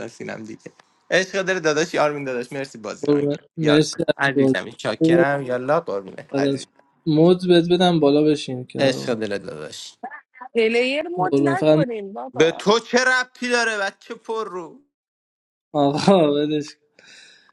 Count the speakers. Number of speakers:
three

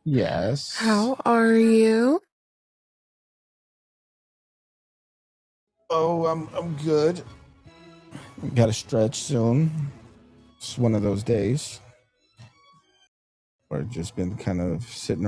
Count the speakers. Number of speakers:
two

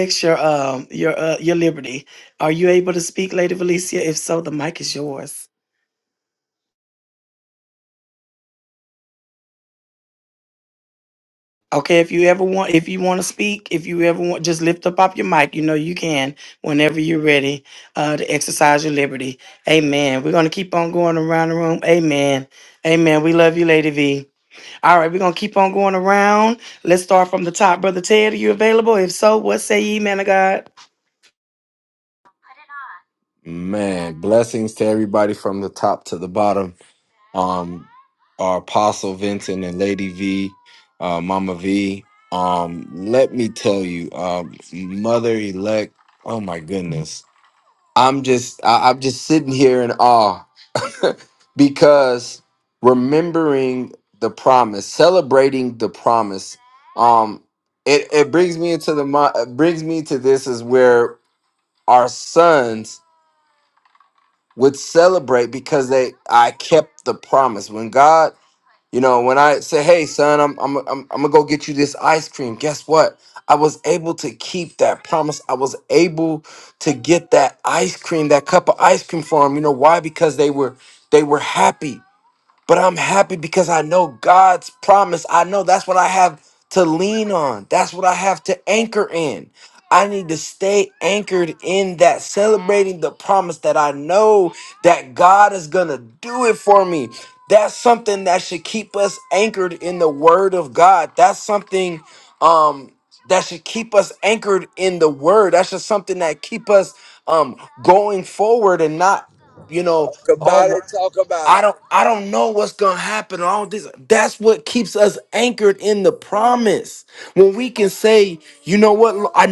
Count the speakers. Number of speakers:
three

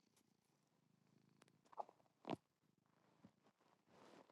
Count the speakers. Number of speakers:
zero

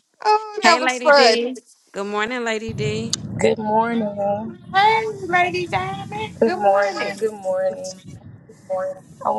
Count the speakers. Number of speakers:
three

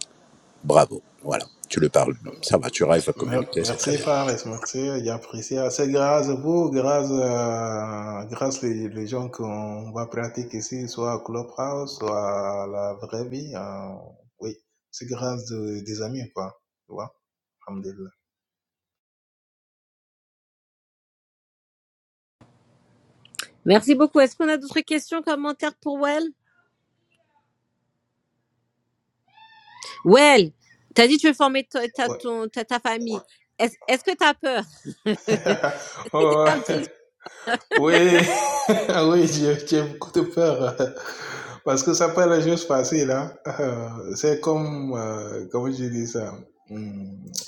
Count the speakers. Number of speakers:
three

